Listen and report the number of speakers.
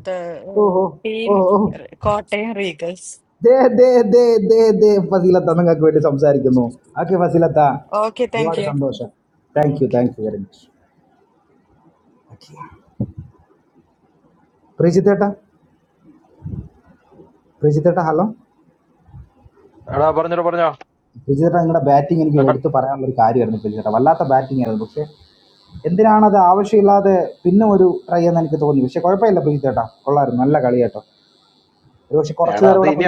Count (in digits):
3